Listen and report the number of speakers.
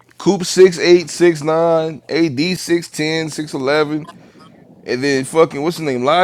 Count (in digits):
1